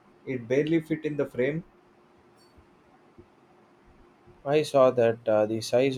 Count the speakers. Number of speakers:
two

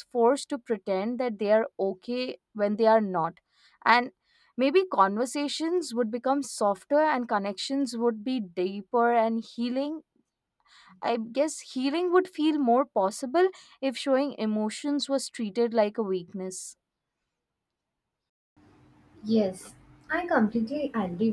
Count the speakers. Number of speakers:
two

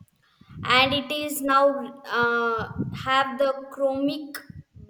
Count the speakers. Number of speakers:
one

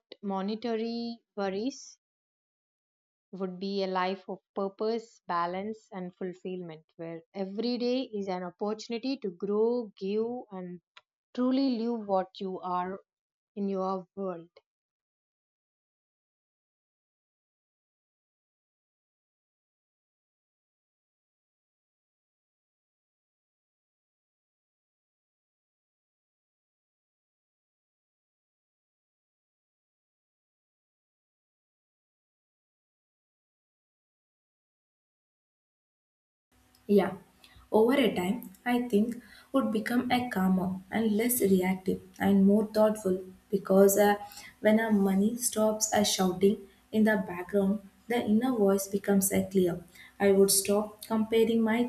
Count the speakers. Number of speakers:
two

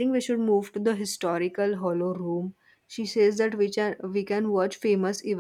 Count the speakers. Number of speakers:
one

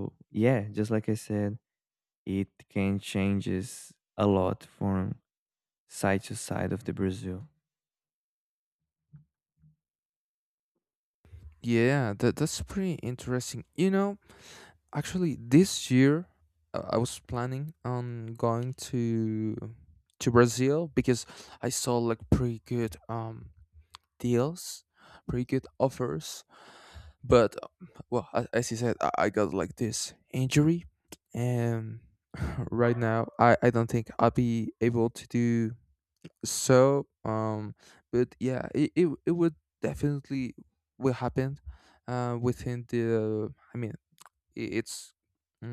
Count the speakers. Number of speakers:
two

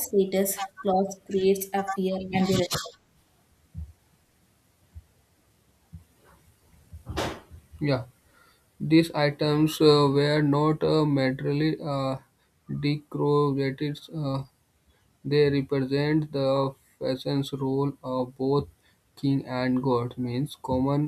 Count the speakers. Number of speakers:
two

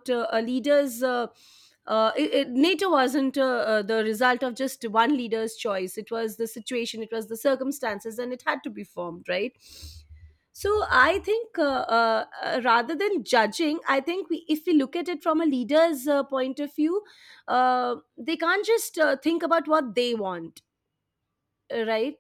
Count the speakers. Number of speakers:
one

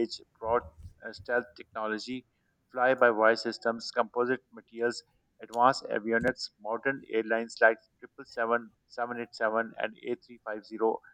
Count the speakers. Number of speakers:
one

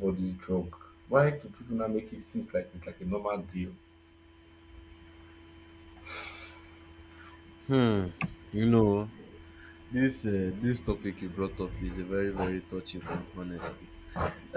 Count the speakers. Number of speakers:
two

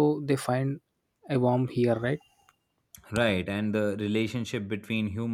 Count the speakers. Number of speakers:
two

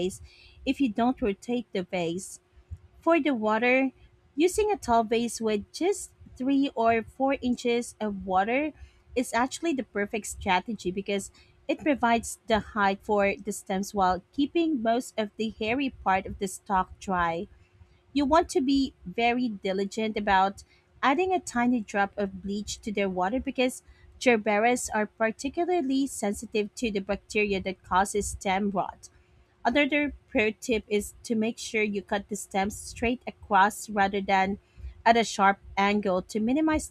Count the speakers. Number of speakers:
one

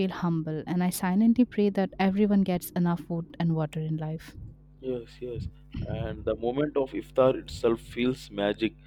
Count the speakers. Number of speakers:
two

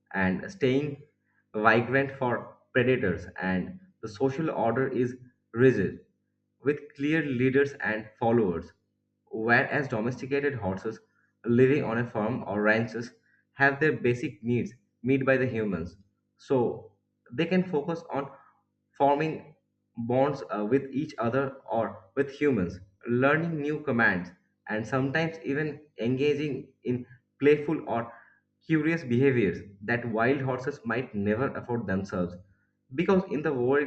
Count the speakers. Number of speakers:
one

